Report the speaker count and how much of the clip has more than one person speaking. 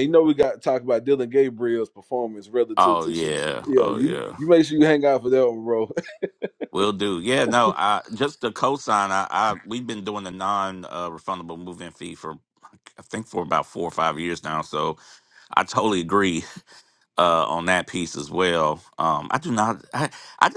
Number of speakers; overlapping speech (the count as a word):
two, about 6%